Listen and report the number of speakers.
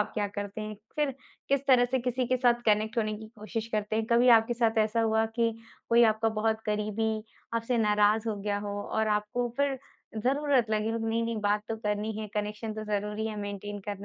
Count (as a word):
one